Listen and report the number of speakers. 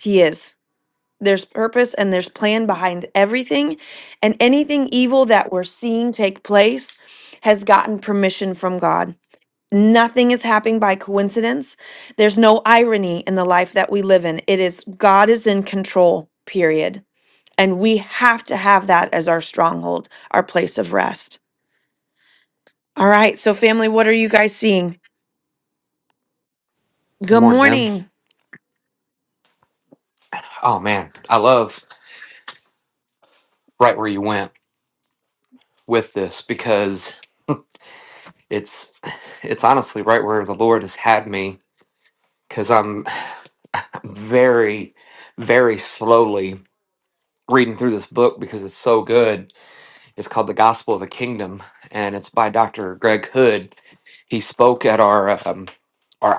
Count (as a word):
two